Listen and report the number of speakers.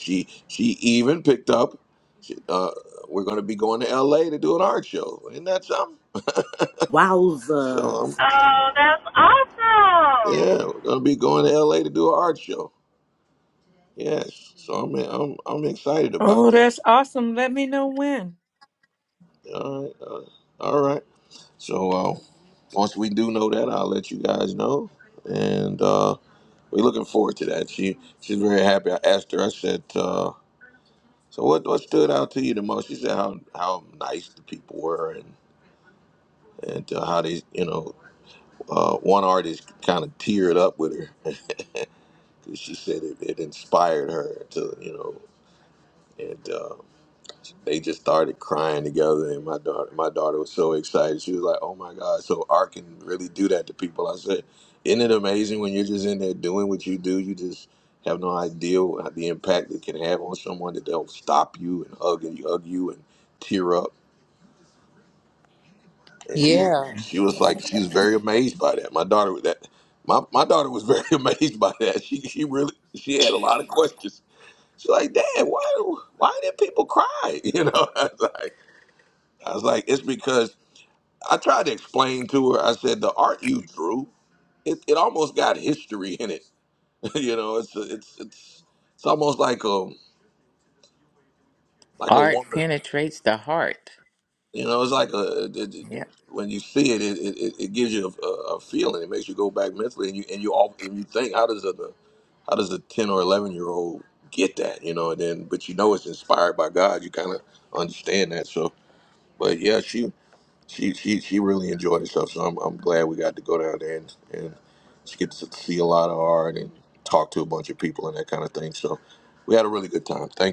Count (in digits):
5